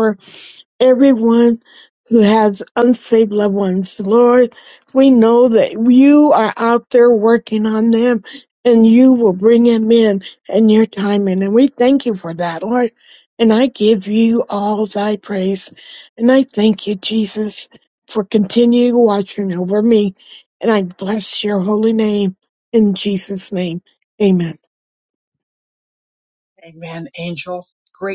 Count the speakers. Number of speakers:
2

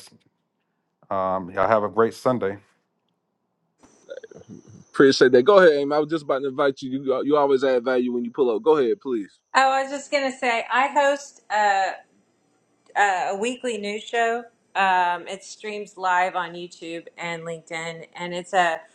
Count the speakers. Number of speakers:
3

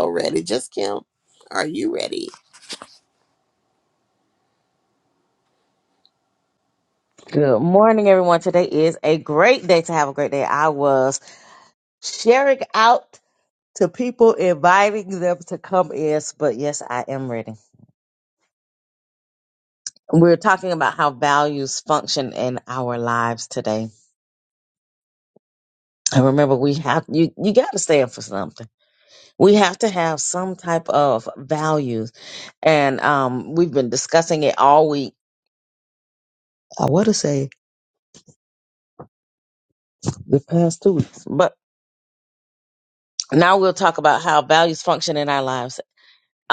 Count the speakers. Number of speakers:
2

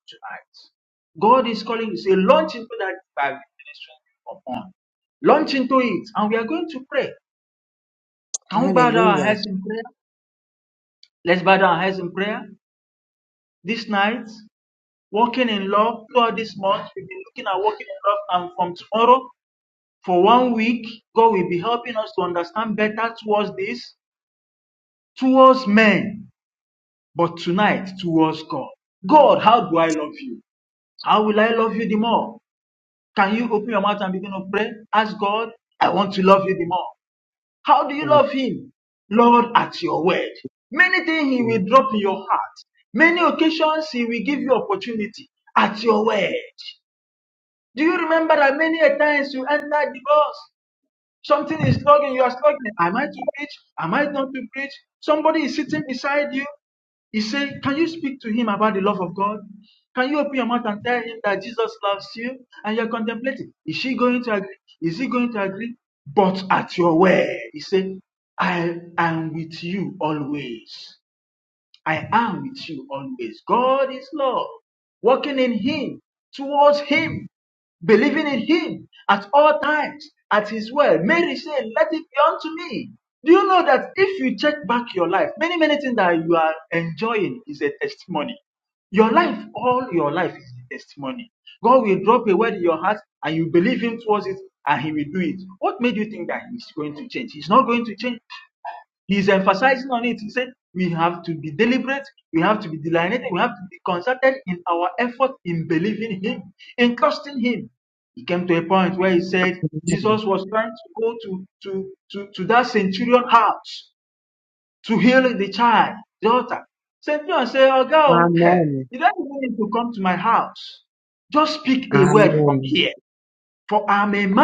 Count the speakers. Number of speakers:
2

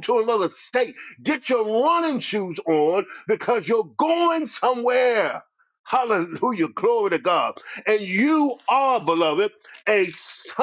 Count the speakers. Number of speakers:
1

